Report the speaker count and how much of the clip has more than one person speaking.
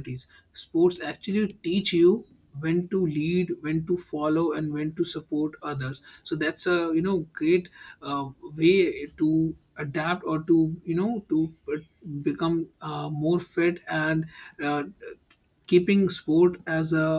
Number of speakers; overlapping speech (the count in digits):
1, no overlap